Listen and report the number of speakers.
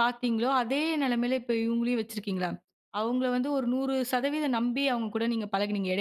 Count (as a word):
one